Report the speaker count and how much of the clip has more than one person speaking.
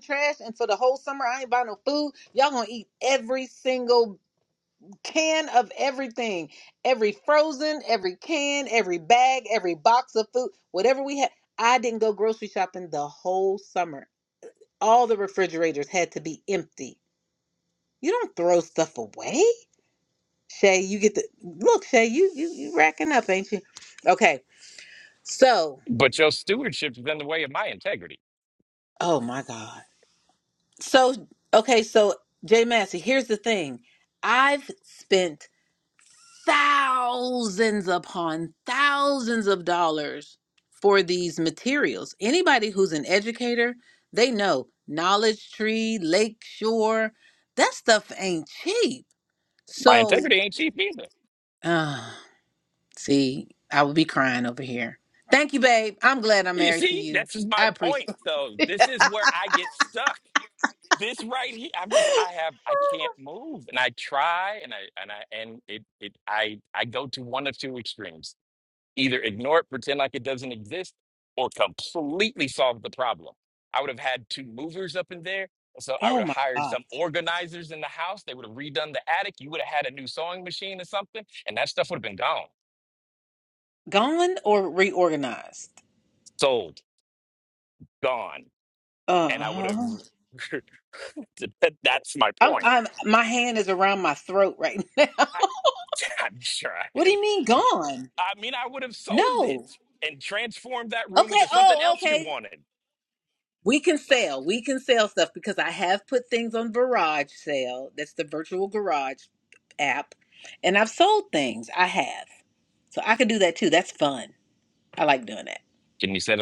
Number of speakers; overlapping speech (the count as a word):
two, about 4%